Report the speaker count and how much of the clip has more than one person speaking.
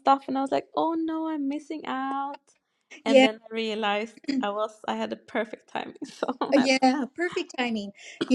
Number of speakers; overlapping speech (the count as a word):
two, about 5%